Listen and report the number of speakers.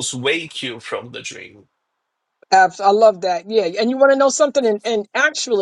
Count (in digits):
2